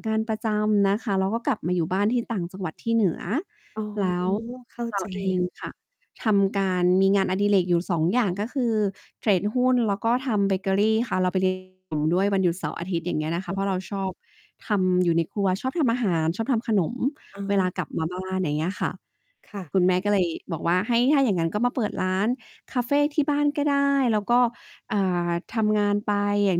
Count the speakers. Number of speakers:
2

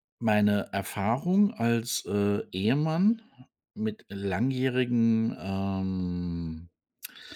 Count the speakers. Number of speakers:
1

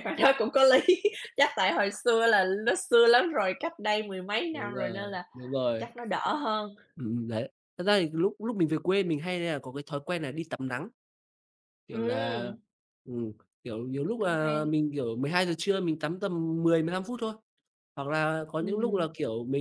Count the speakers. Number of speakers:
2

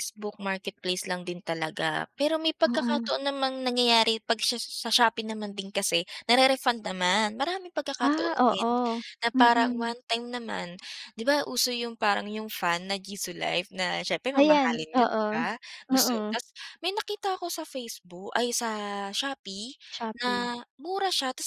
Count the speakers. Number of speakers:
2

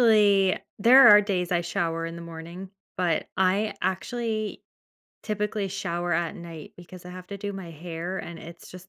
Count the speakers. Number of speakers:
1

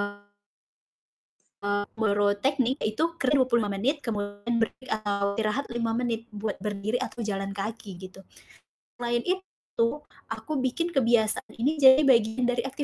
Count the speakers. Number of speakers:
1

